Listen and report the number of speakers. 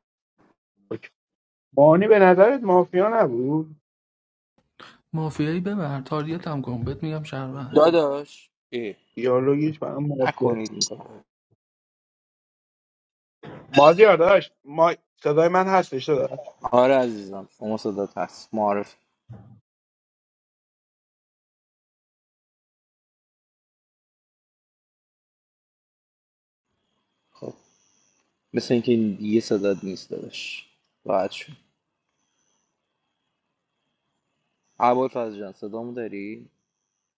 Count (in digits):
3